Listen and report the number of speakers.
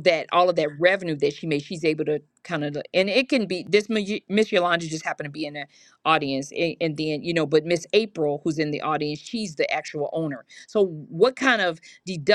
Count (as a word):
one